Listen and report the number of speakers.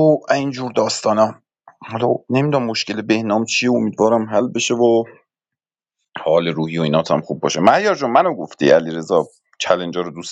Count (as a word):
one